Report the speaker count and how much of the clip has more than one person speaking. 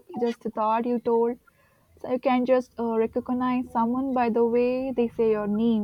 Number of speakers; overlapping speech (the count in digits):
1, no overlap